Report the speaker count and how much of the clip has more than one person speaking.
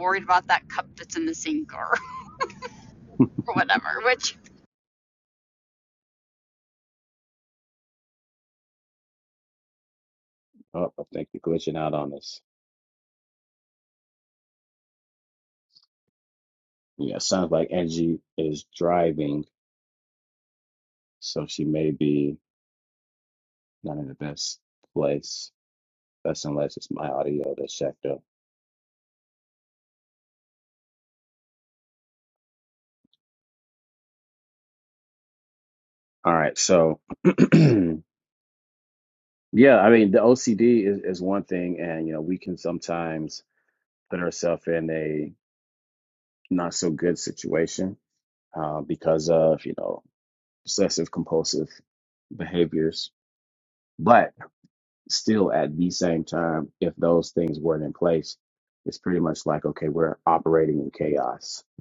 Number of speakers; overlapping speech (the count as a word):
two, no overlap